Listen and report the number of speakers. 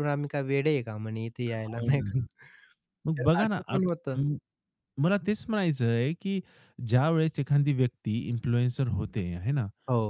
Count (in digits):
2